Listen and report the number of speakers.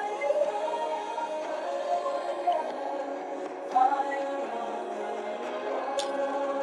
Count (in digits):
0